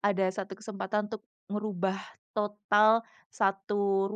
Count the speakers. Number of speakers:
1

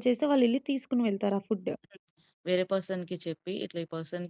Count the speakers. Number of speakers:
2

